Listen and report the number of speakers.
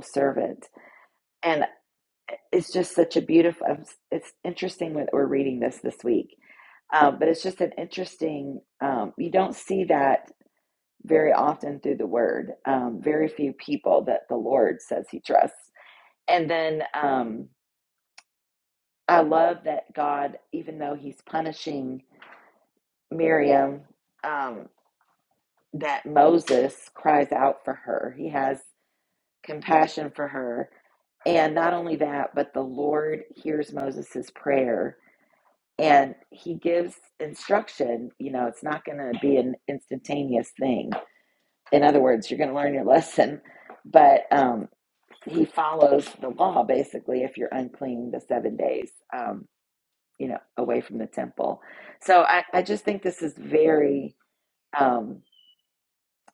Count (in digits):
1